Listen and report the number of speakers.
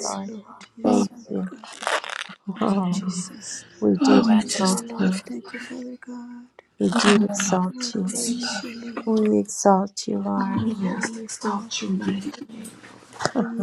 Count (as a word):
three